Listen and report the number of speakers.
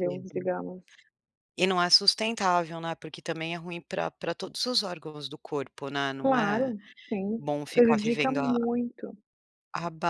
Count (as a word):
two